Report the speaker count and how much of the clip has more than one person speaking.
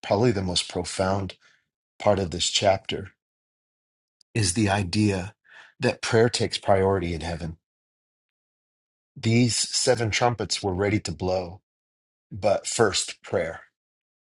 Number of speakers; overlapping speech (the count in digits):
1, no overlap